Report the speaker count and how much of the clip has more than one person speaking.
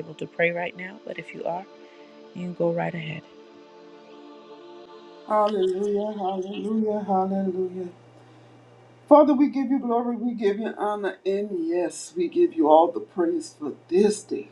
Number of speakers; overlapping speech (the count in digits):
2, no overlap